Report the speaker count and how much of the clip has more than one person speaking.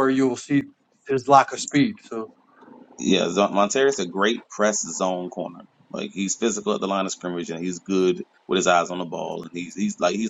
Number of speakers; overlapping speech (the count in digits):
2, no overlap